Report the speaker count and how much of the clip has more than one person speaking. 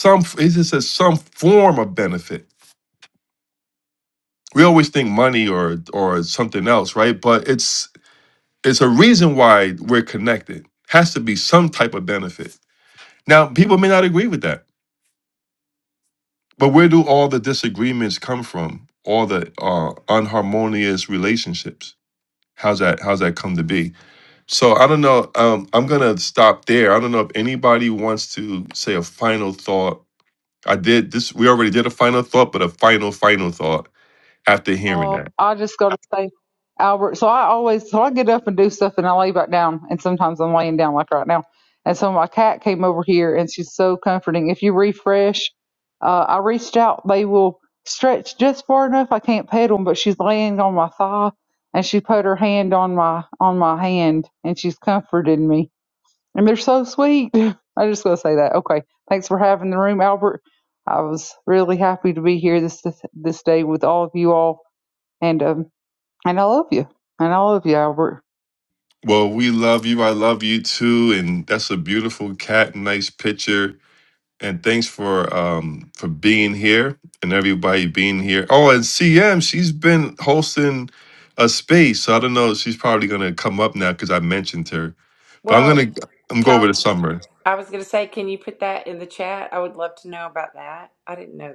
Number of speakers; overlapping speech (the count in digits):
3, about 1%